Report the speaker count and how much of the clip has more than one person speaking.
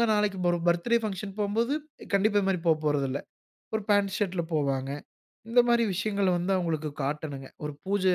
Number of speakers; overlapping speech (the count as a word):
one, no overlap